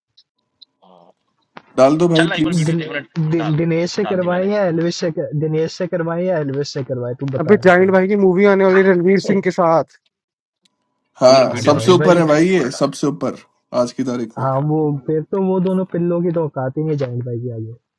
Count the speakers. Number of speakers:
4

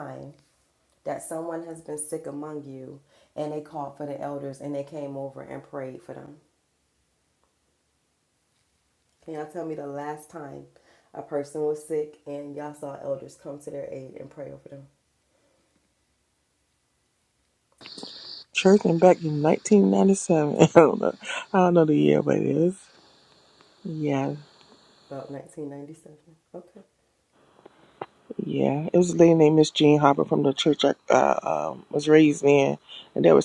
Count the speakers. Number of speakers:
2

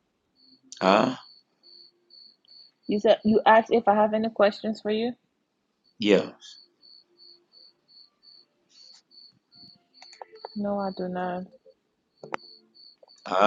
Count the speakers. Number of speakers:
2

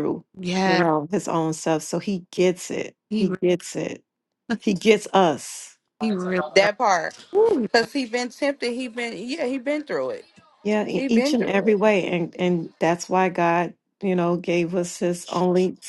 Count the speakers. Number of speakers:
3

